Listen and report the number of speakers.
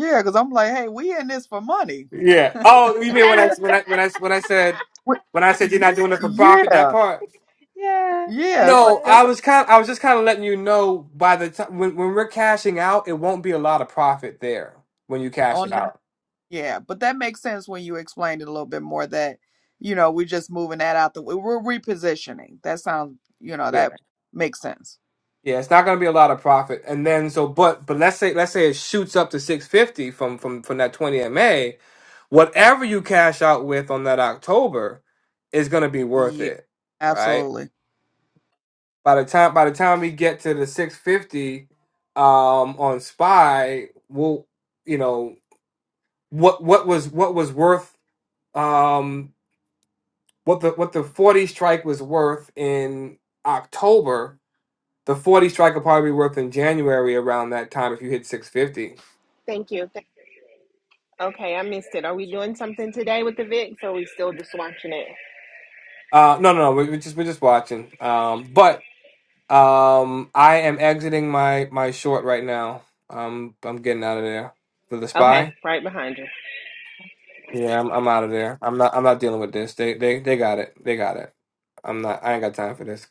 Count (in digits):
4